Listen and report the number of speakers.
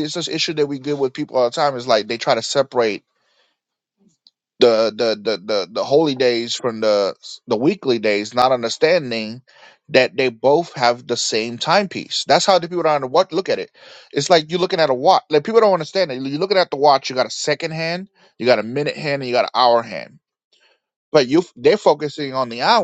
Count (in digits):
1